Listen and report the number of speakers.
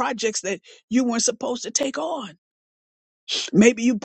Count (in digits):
1